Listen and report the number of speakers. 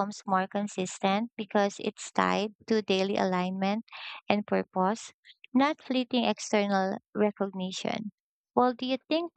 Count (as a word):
one